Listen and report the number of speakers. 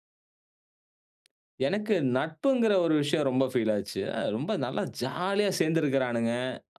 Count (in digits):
1